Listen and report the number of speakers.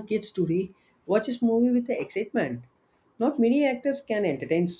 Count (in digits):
1